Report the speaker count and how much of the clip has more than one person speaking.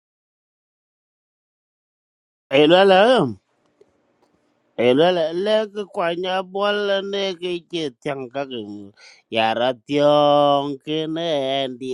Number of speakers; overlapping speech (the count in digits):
1, no overlap